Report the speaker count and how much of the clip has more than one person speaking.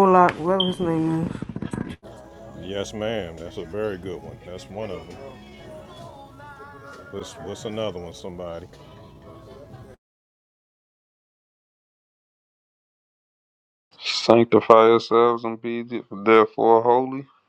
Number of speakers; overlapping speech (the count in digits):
3, no overlap